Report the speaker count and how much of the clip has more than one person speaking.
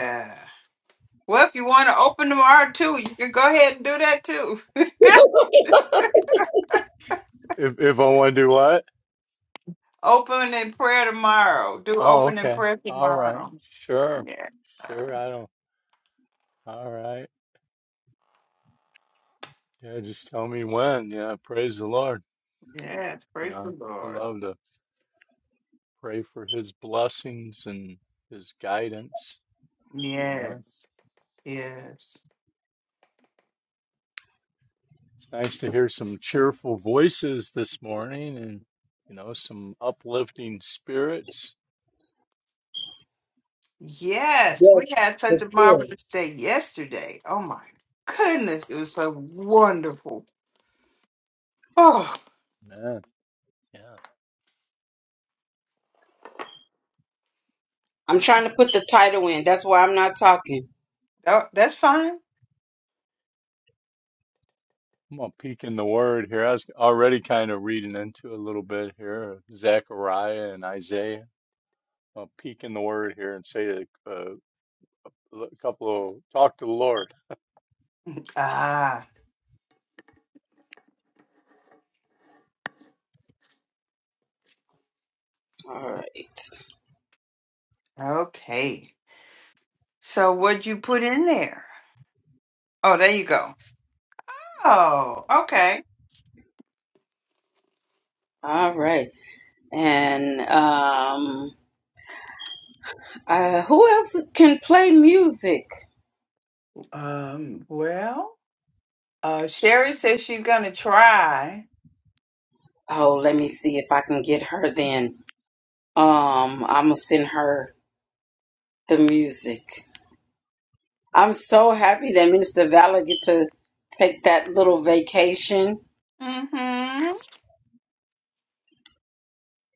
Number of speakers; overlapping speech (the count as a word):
three, about 2%